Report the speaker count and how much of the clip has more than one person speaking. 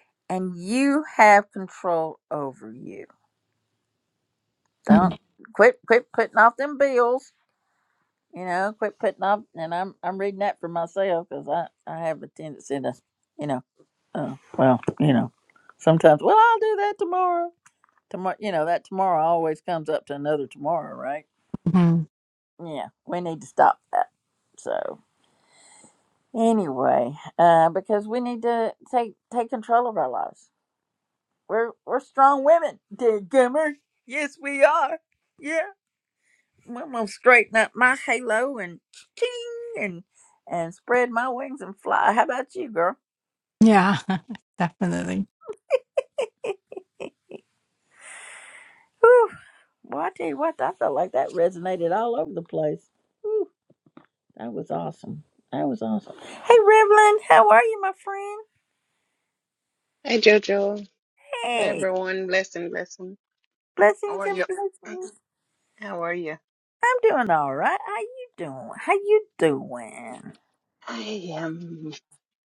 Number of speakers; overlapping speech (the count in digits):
3, about 1%